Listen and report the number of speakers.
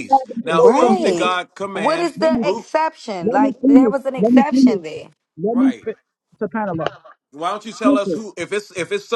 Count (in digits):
3